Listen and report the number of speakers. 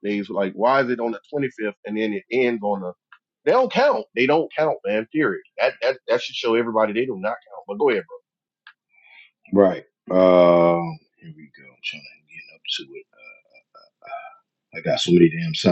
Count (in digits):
2